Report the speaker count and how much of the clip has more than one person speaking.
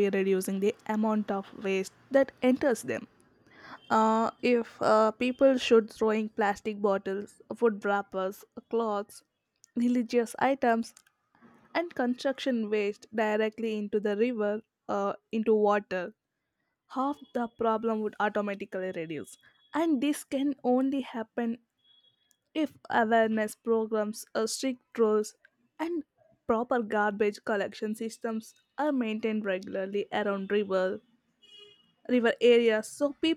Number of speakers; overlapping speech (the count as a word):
one, no overlap